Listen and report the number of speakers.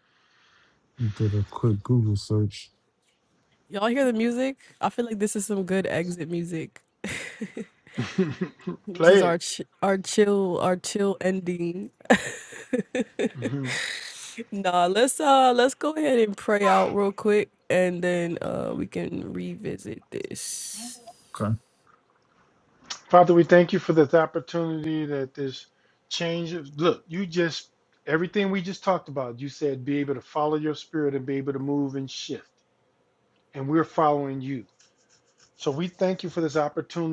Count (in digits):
3